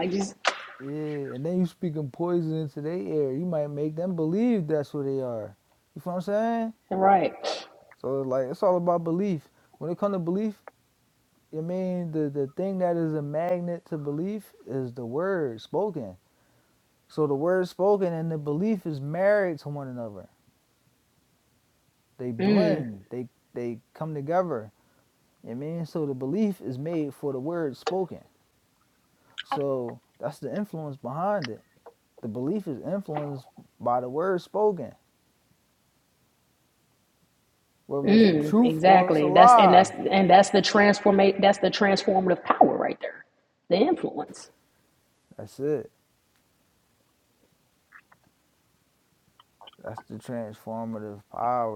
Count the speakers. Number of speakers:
two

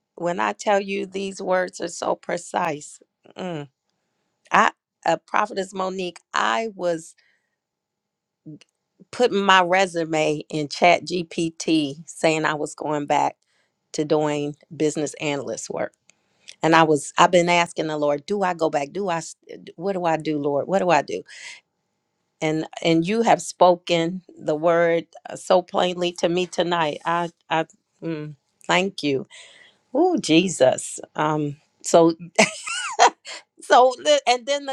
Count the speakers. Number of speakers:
one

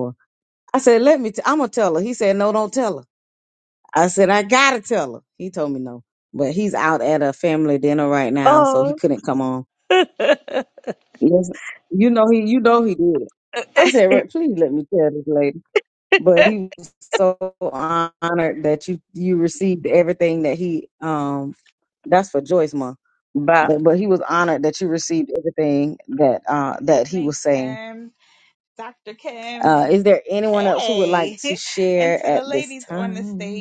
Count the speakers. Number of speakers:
three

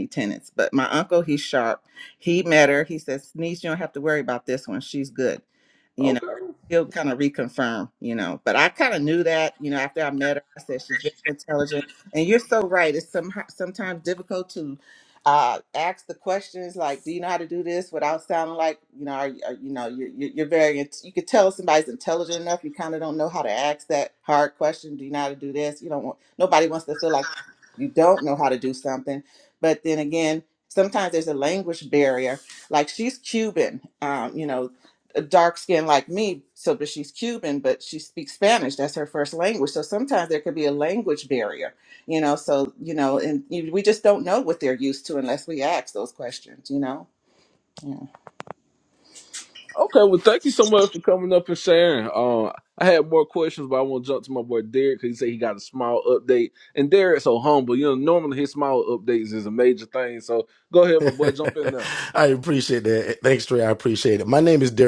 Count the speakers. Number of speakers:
three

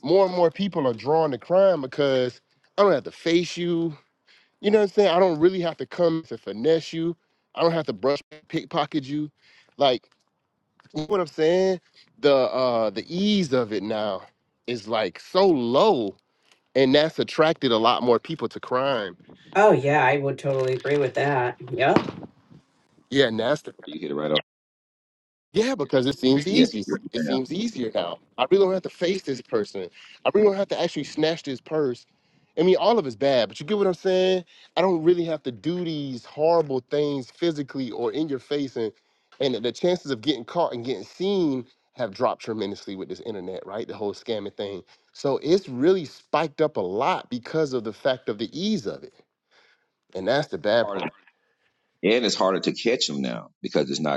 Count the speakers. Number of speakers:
three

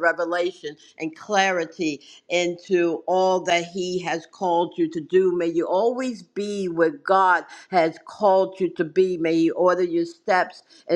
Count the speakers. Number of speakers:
one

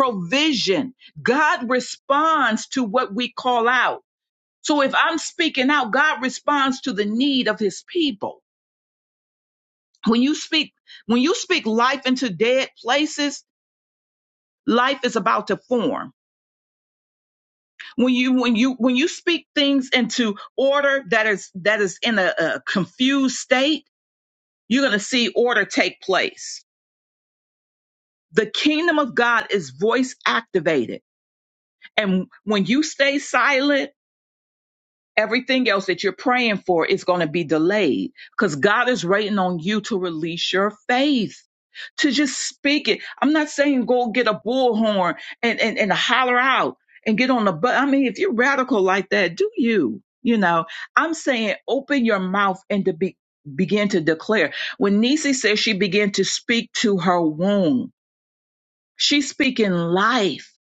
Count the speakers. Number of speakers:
one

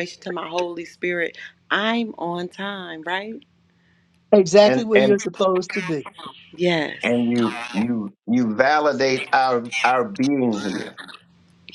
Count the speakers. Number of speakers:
three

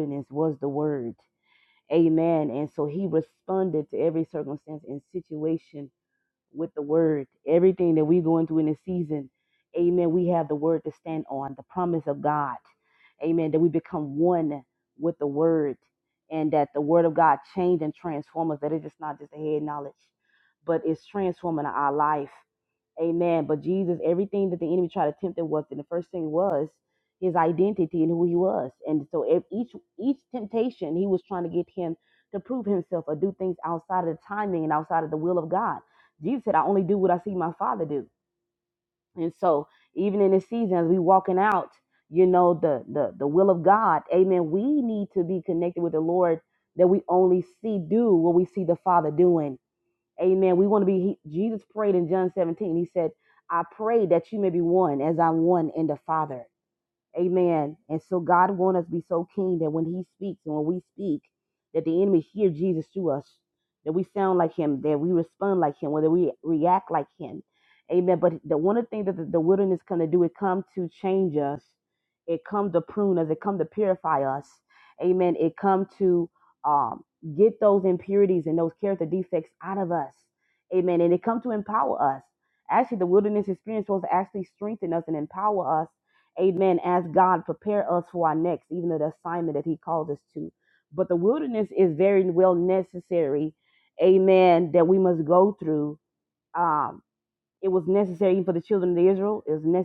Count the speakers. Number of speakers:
one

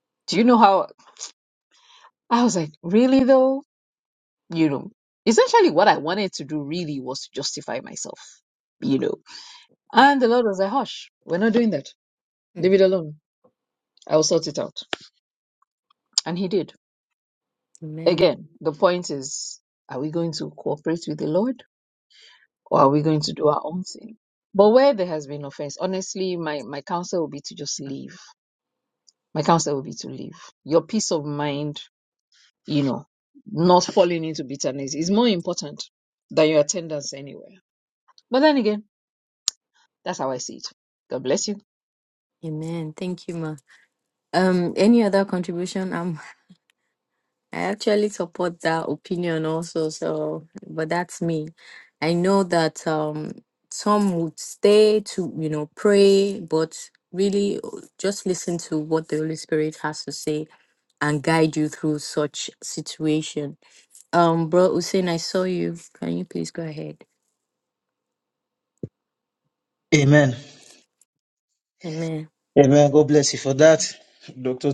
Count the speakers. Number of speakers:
three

